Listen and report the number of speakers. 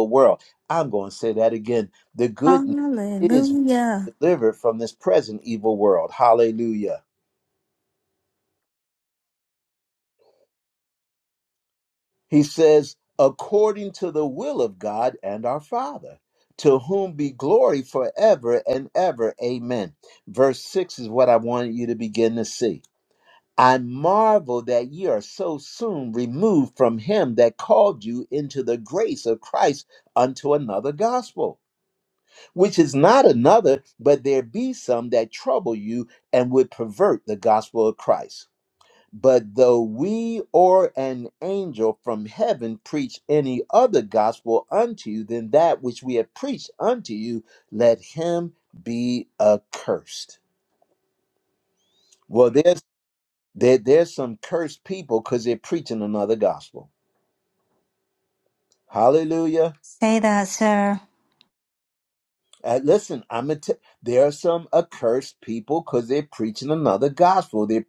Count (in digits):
2